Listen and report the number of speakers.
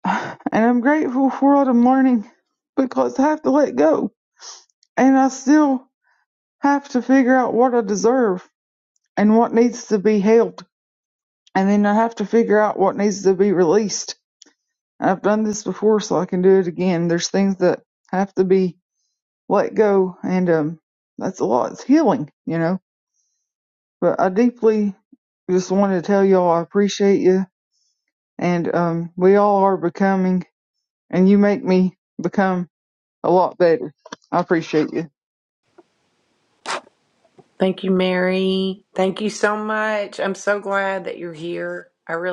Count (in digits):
2